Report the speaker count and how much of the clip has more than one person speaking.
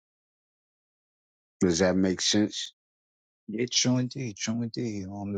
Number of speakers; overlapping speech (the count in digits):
2, no overlap